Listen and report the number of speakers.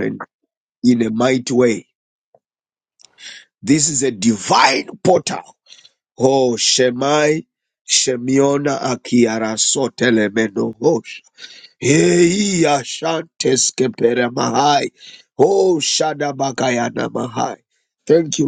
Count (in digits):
1